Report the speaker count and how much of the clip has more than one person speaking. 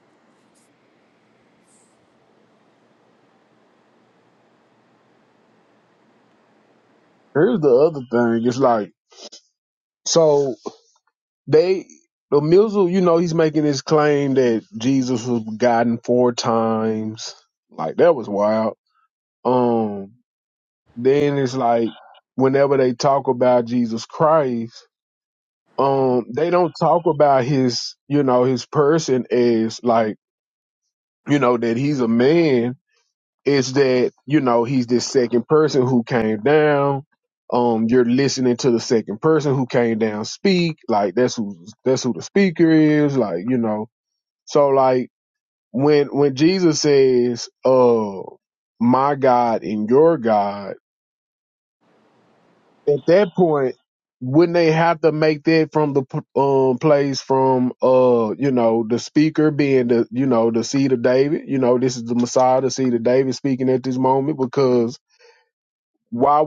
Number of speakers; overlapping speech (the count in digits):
1, no overlap